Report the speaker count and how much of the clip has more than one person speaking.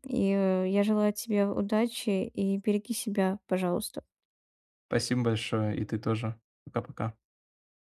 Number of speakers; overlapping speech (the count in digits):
2, no overlap